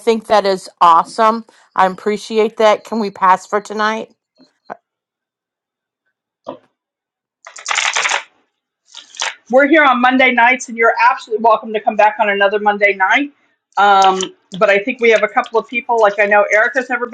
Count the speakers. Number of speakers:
2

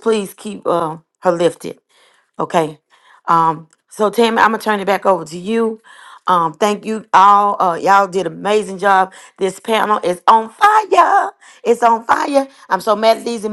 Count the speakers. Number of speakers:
1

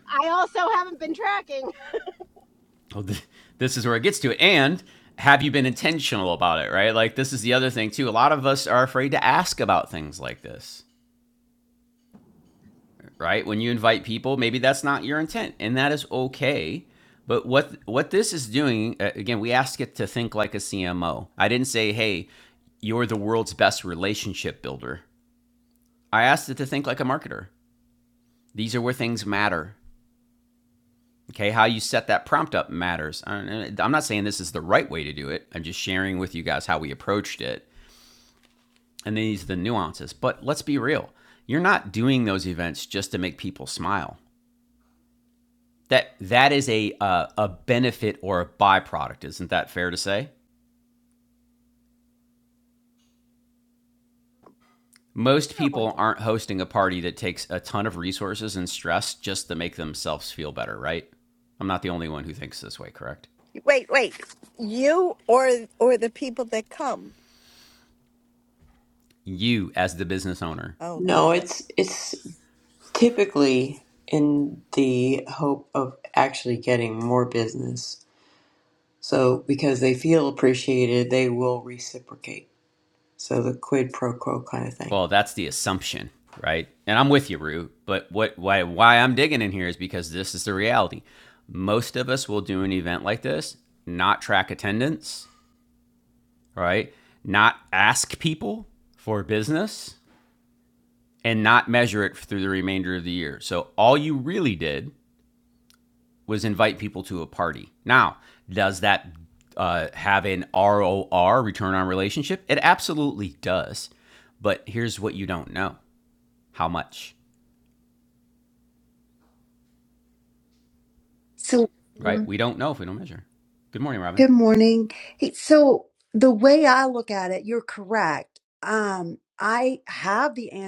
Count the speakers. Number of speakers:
5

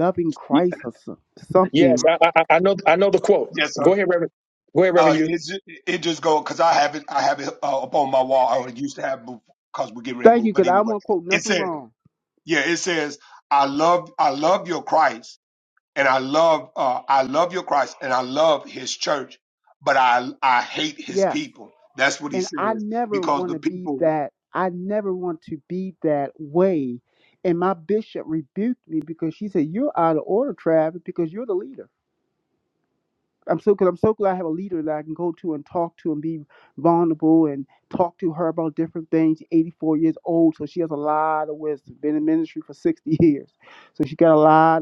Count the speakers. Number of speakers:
3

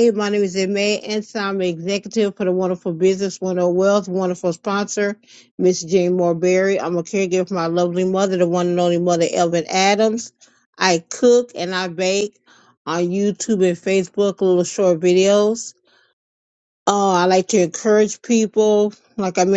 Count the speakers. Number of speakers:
1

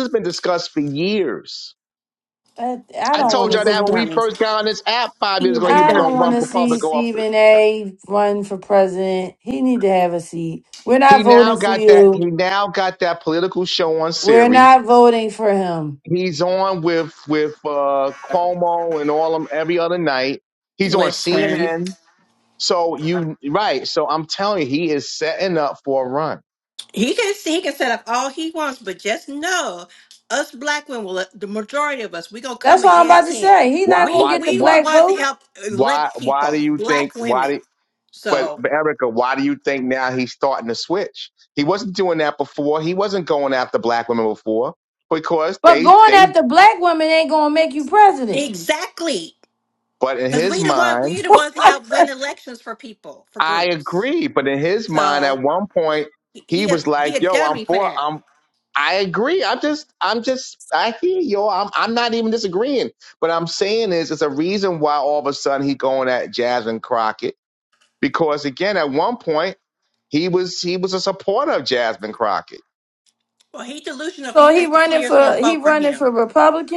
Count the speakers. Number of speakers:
3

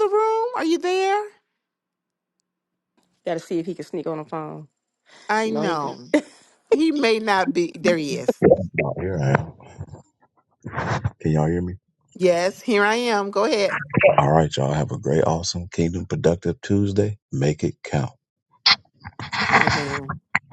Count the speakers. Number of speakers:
3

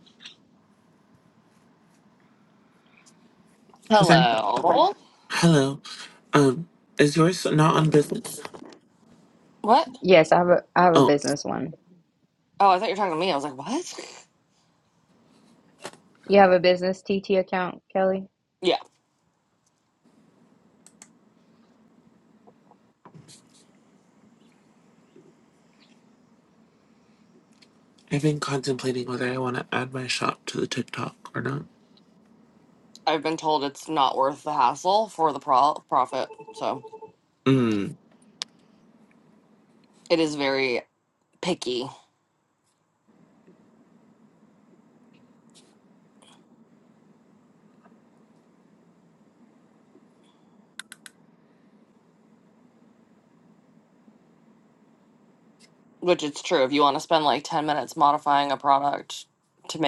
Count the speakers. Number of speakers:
3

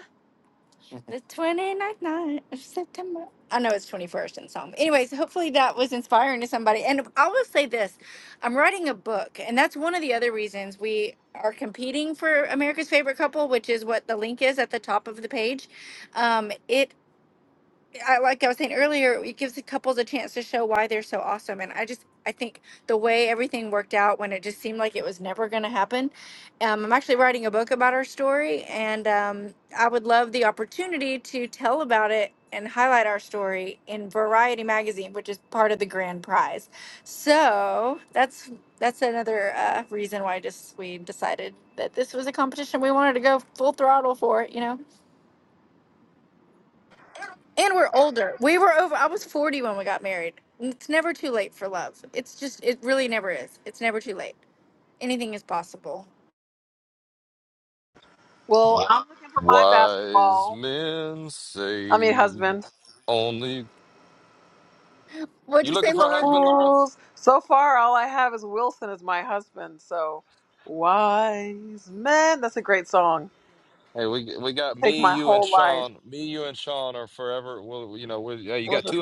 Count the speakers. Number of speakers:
3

